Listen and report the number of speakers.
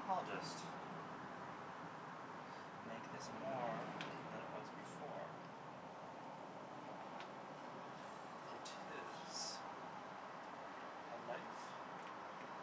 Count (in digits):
1